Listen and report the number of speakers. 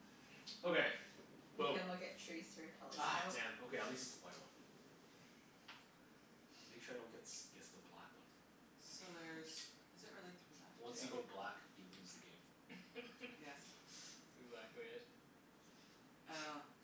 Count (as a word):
four